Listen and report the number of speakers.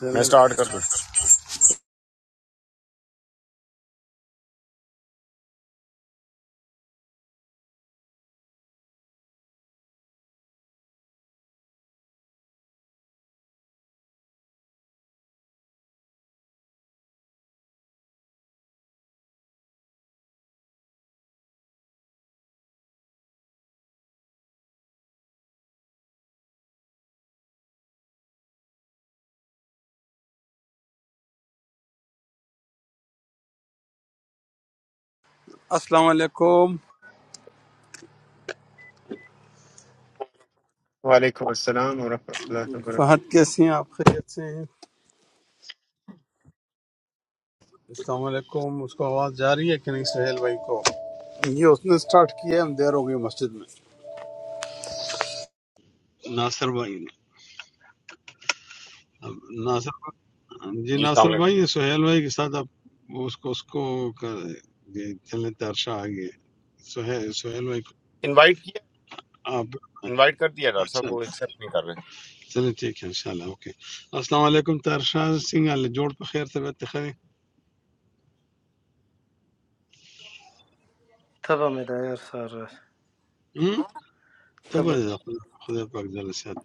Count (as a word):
four